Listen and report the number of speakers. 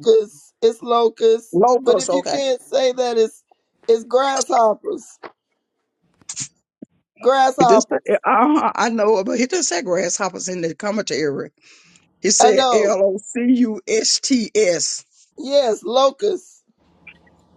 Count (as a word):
two